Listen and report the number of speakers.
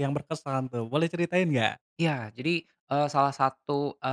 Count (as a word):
two